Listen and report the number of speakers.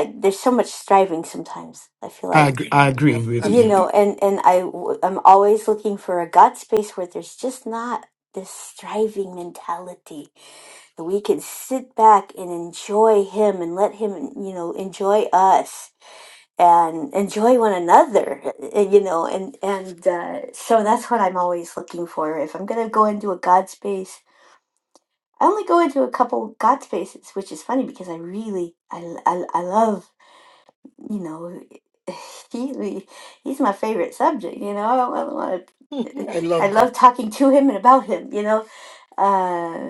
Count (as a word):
three